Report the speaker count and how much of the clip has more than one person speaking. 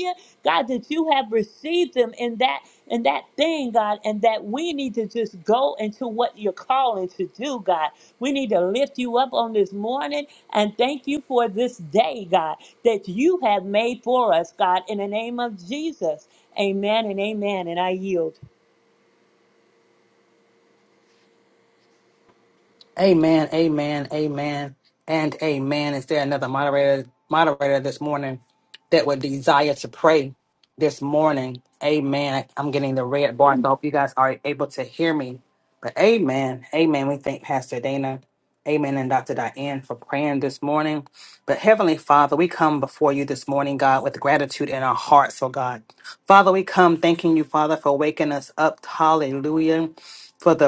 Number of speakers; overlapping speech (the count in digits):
2, no overlap